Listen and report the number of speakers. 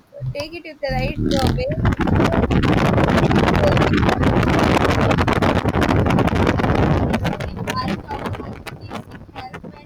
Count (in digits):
2